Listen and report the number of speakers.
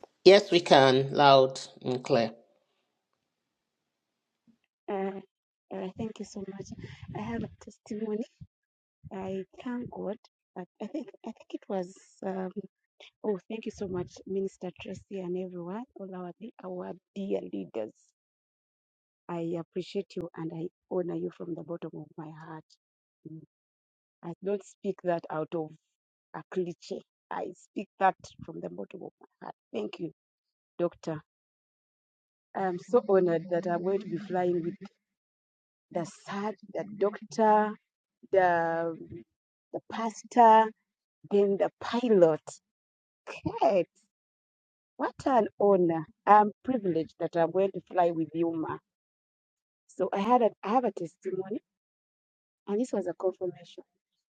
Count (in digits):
2